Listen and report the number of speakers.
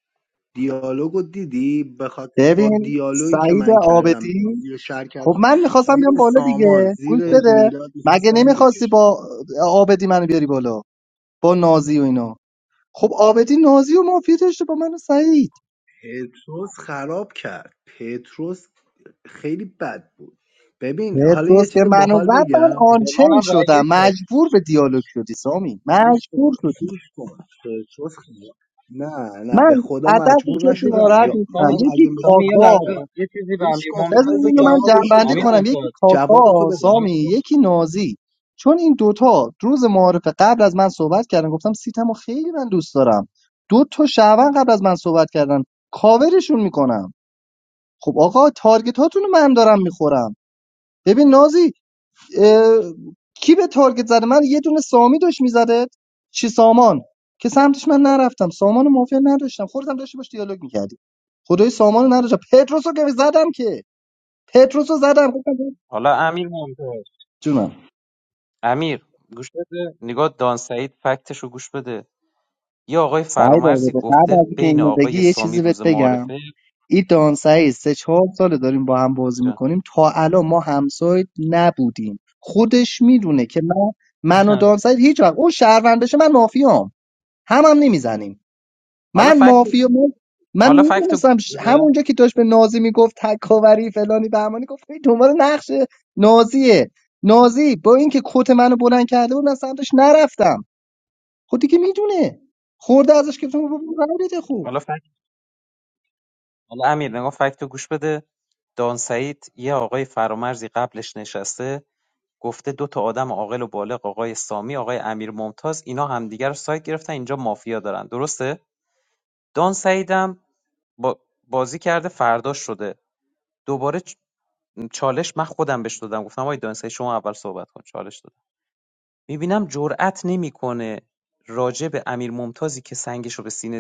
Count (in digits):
3